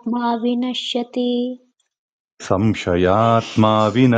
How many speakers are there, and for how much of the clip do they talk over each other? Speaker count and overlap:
two, no overlap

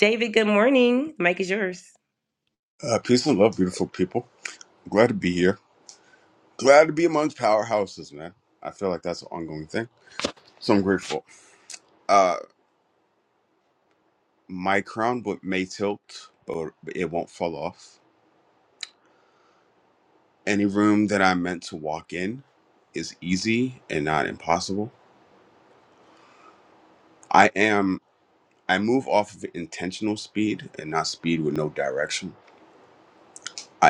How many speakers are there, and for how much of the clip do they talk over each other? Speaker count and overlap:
two, no overlap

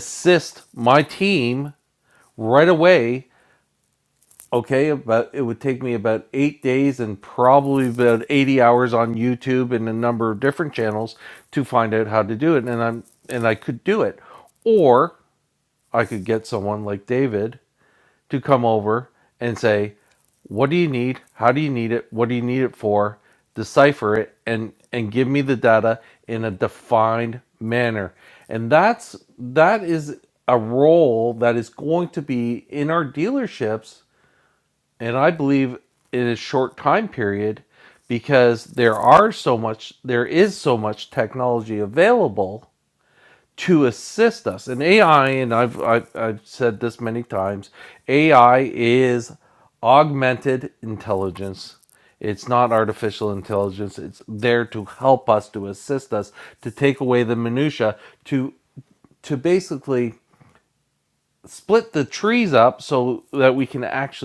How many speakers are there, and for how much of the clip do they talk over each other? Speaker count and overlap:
one, no overlap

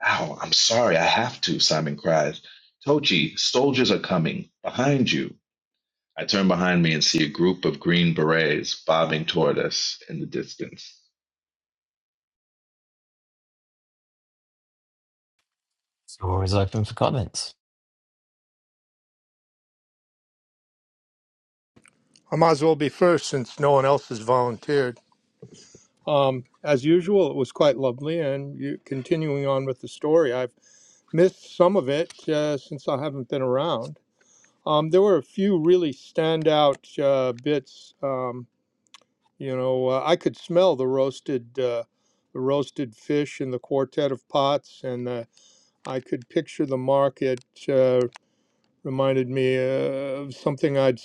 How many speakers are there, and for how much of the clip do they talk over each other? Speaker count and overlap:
three, no overlap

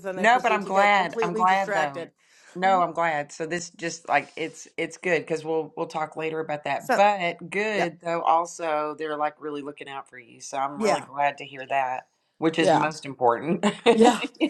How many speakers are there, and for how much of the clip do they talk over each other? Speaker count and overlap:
two, about 18%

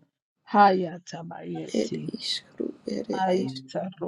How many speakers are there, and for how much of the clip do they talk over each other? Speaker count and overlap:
two, about 10%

